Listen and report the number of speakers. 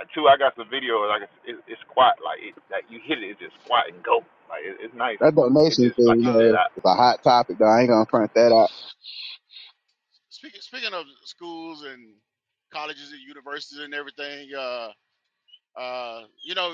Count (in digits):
3